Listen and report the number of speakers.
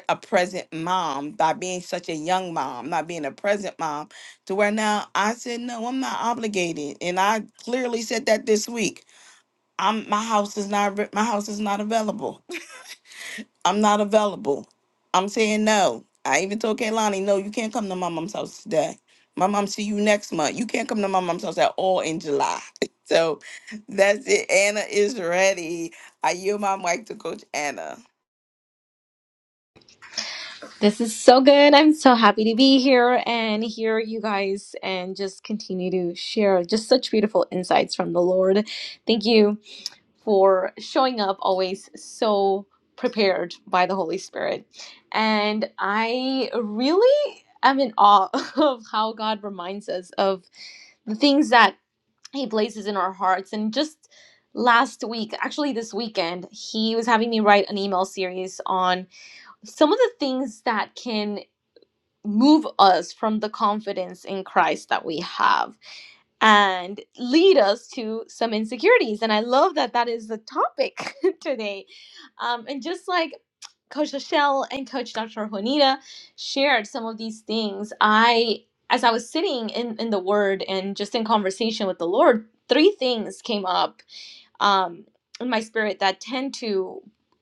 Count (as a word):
two